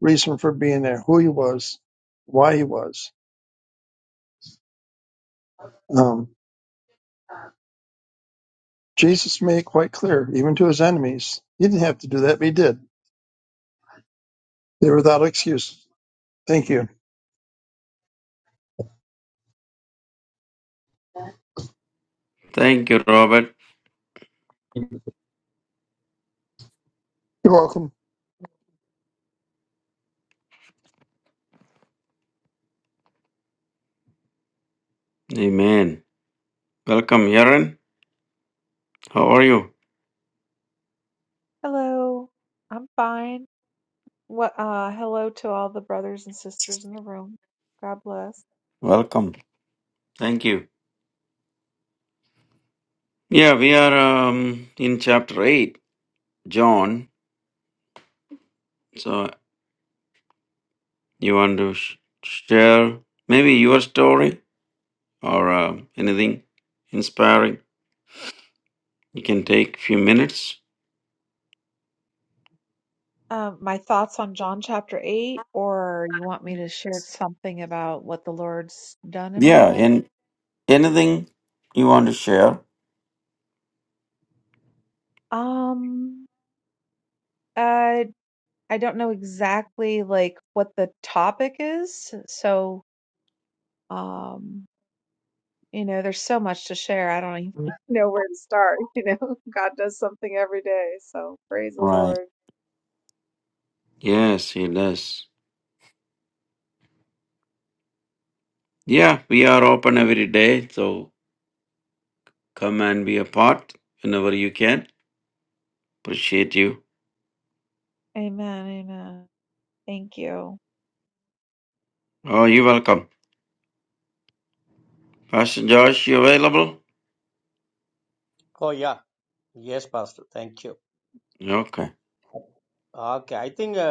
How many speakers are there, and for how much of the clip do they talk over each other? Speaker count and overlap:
four, about 1%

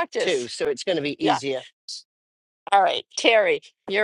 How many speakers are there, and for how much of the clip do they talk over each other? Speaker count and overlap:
two, about 16%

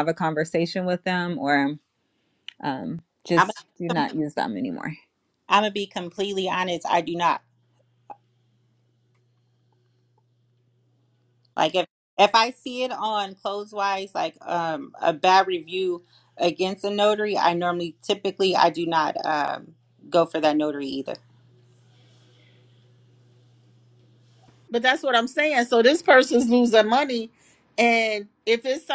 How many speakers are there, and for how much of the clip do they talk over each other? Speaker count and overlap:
three, about 1%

